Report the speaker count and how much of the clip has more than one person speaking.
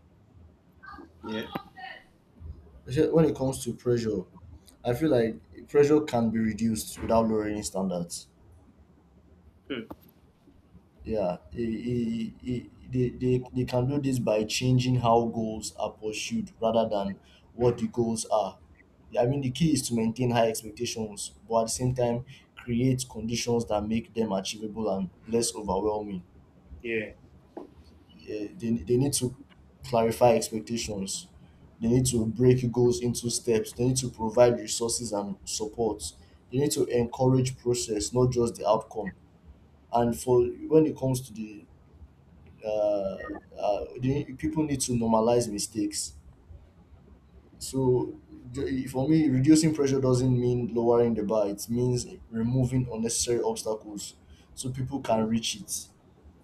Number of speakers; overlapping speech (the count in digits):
2, under 1%